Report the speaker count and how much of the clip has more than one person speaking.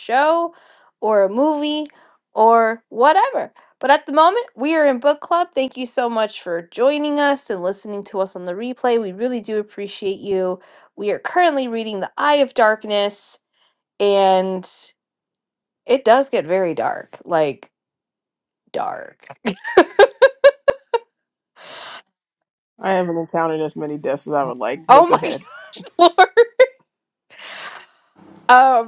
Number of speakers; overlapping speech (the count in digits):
2, about 2%